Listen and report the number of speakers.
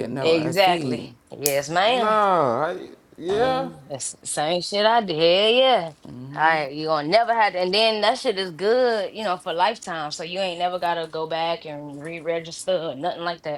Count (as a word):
three